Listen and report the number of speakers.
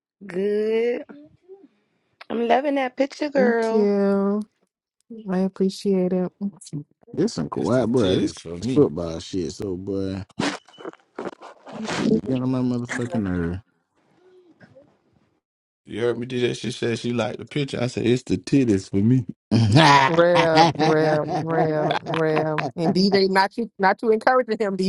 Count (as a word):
four